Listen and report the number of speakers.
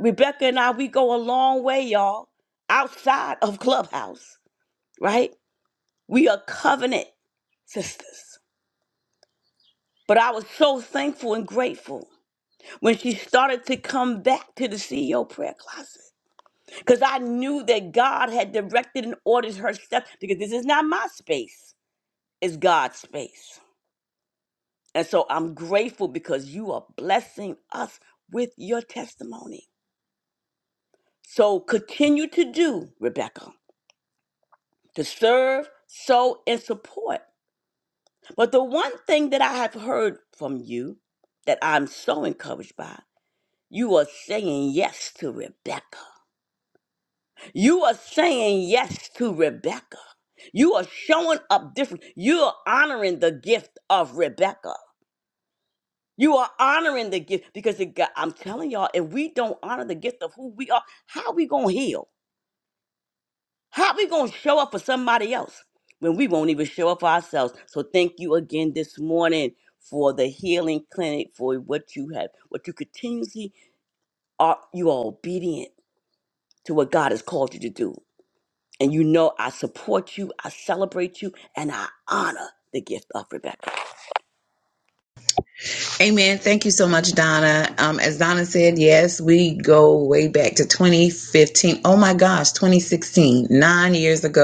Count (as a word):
two